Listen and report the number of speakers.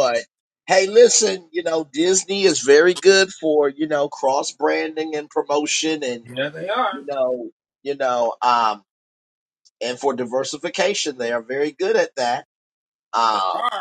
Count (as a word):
two